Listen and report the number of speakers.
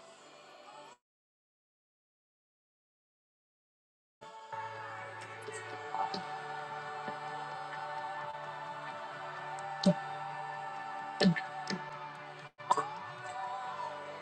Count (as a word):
zero